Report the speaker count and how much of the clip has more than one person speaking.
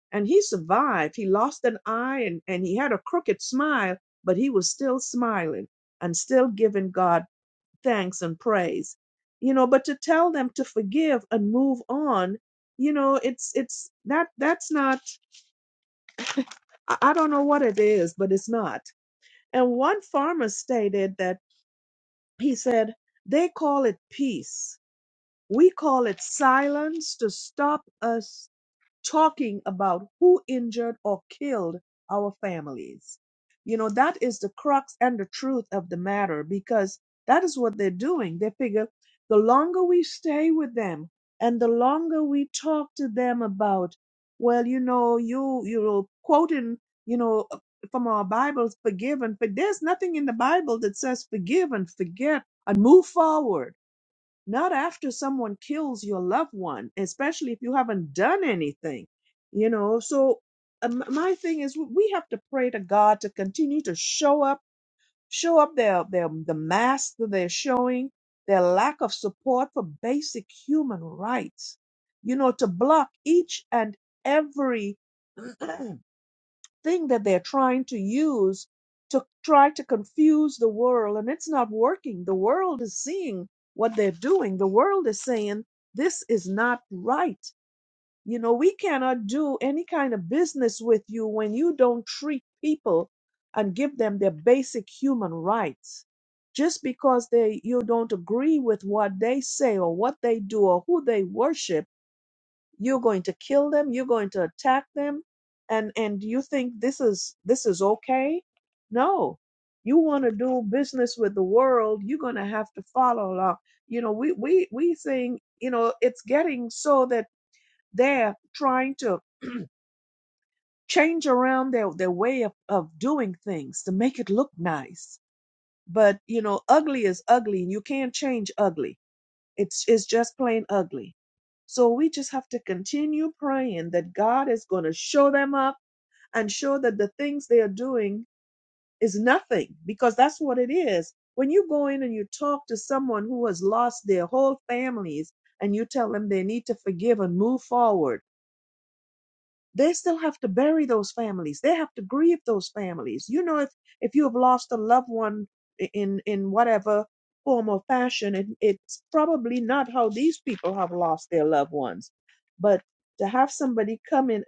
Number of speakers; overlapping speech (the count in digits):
1, no overlap